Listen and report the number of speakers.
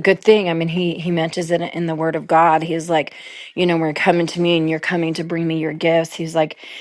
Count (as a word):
one